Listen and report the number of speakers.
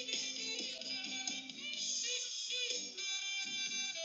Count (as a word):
zero